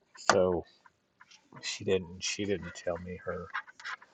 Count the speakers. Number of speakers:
1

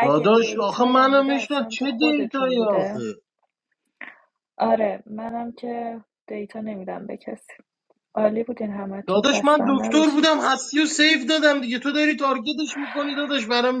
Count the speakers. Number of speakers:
2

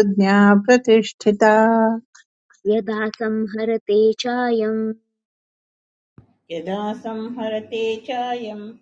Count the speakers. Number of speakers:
3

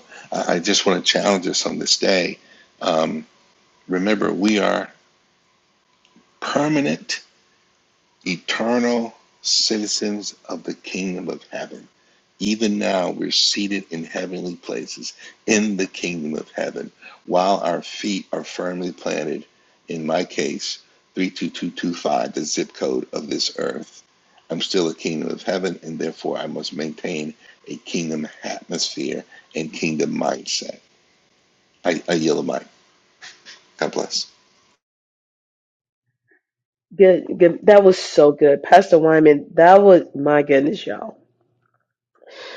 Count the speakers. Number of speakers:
2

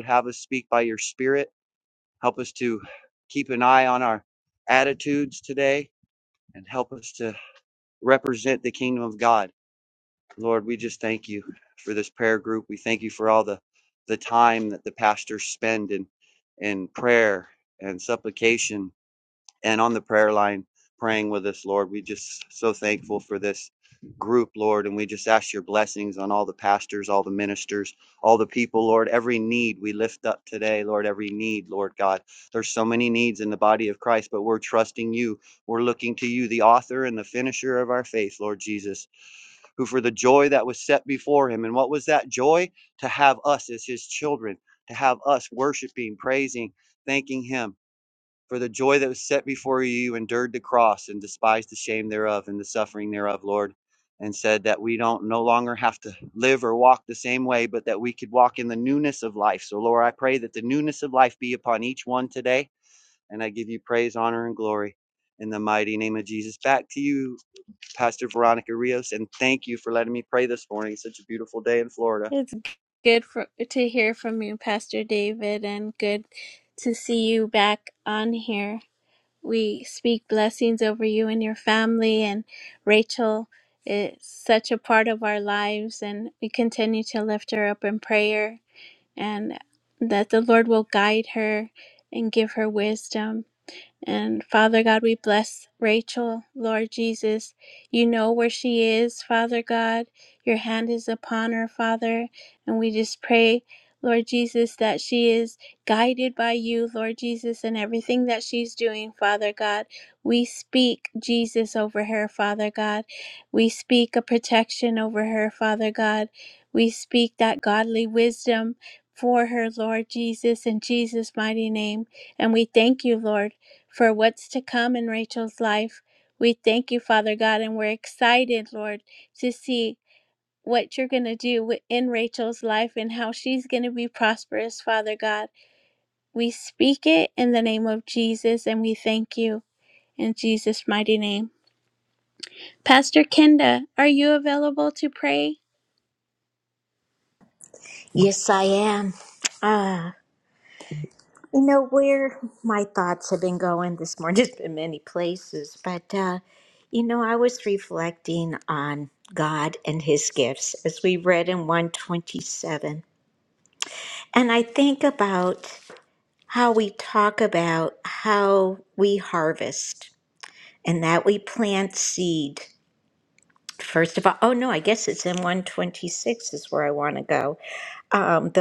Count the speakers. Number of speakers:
3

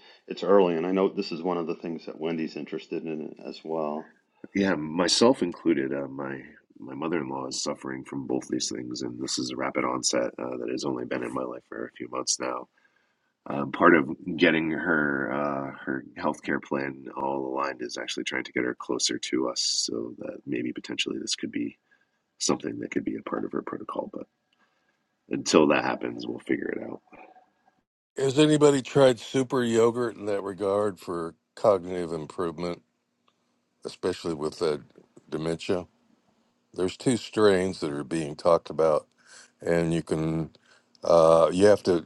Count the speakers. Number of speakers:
3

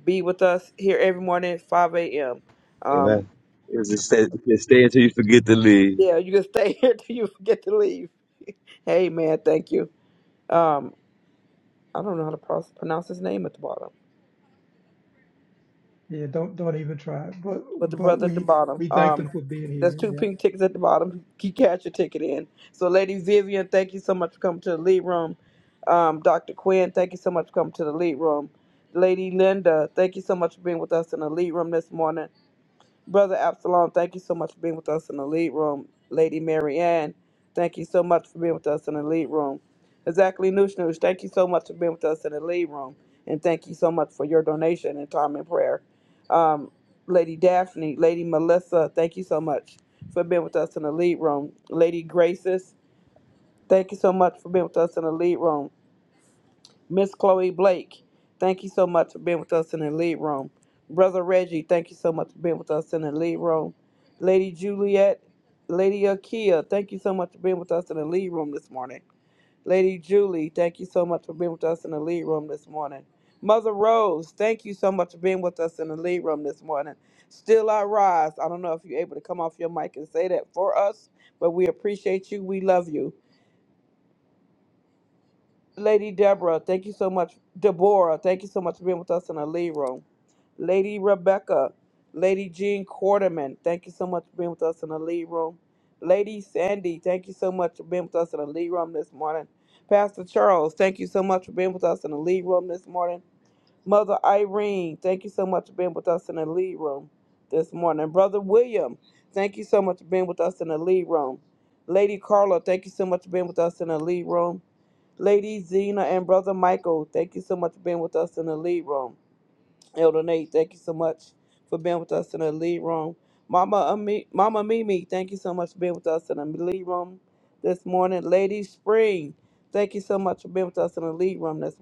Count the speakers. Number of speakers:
3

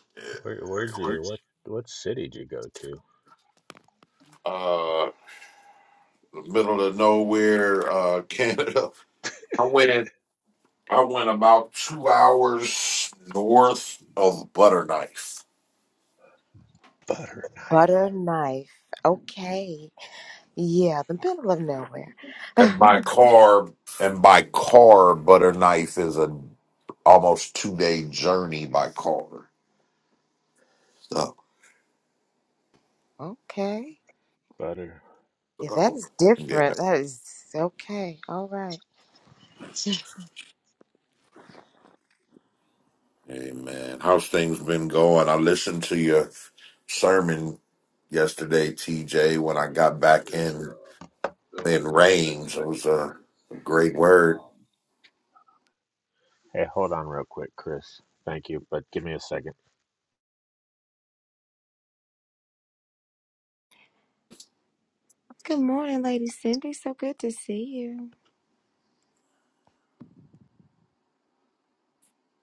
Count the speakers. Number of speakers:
3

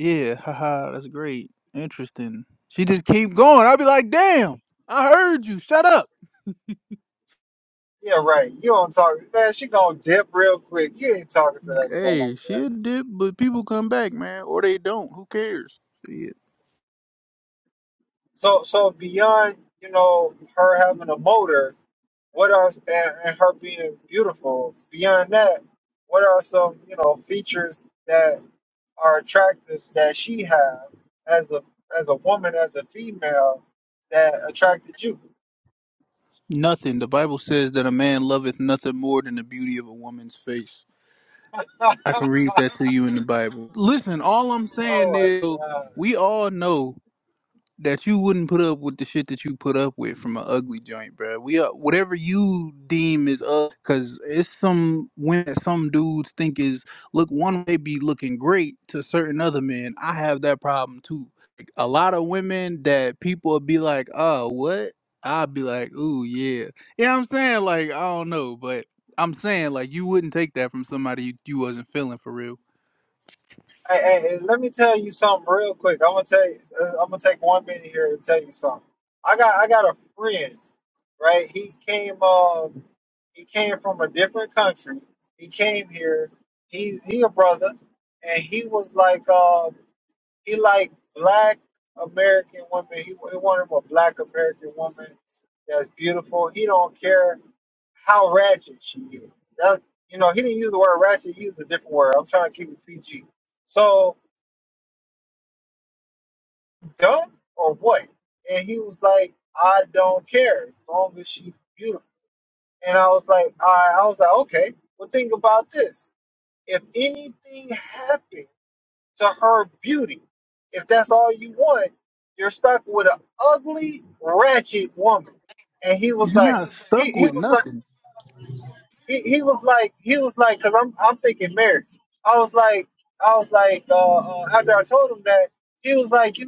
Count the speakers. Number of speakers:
2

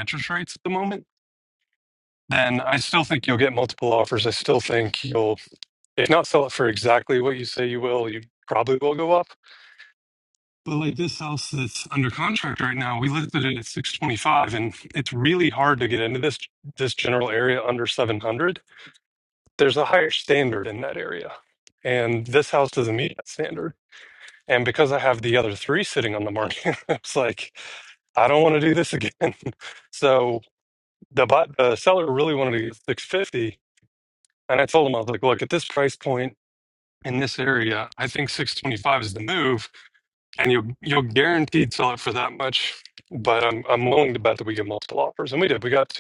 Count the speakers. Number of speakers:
1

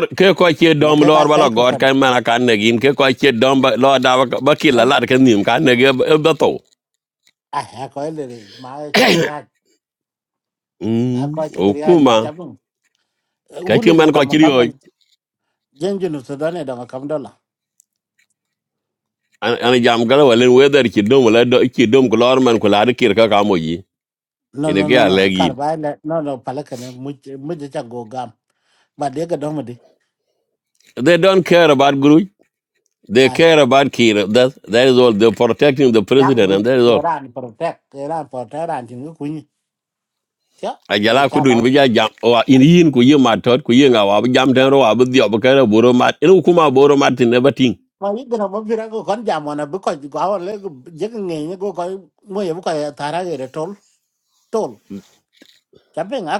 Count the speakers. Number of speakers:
2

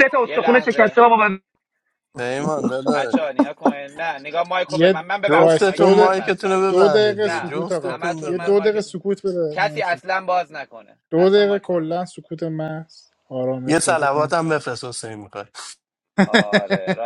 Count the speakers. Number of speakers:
4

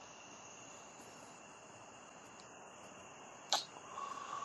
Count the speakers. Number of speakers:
0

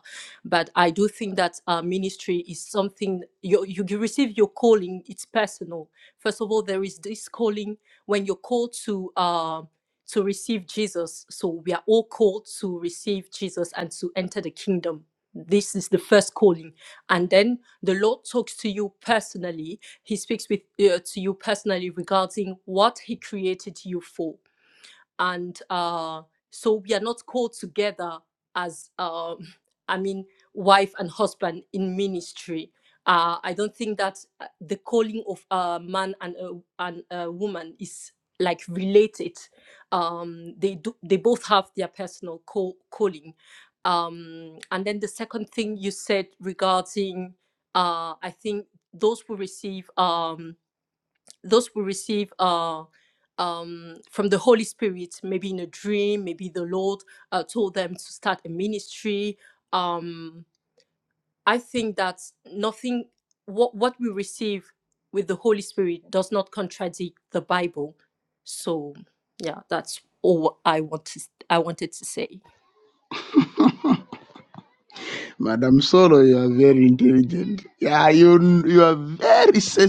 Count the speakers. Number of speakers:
2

